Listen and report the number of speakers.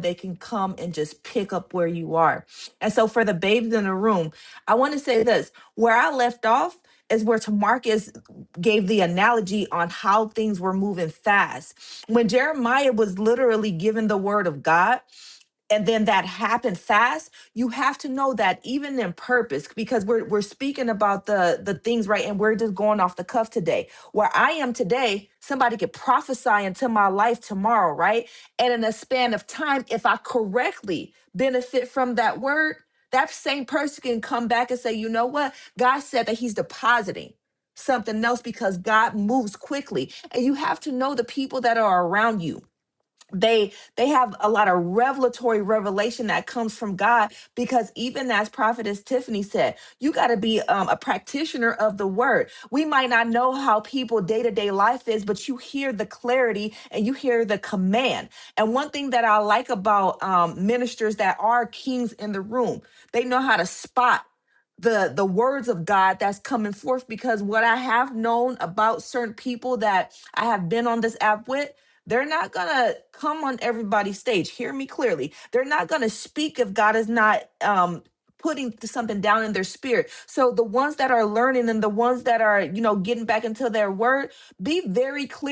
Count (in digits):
1